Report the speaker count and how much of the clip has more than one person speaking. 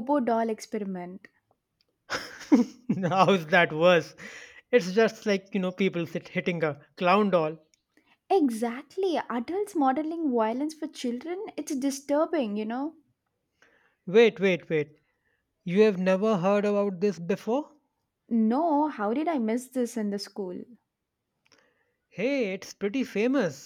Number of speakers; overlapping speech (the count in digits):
2, no overlap